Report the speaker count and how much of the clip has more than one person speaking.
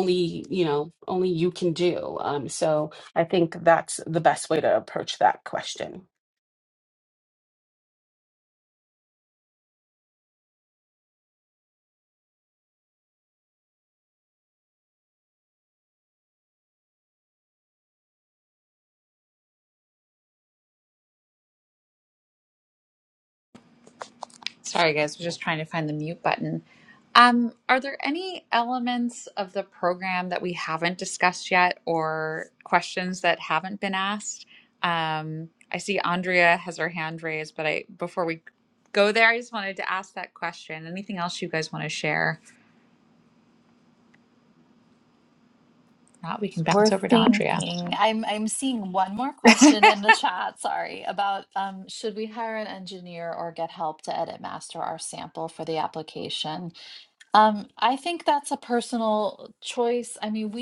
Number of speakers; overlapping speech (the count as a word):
three, about 2%